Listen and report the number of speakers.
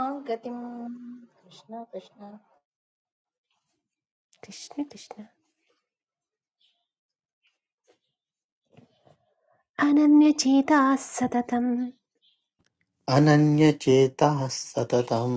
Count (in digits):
3